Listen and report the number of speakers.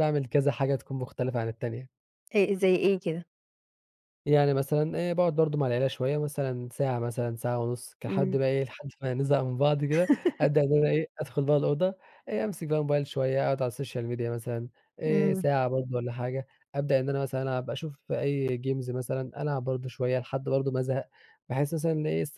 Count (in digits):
2